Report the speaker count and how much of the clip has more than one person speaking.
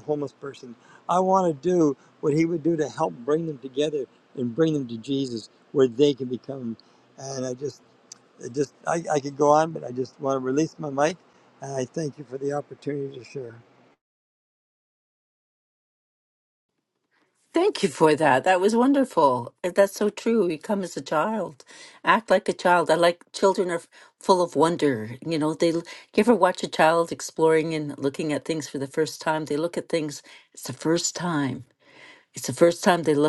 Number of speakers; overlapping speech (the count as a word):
two, no overlap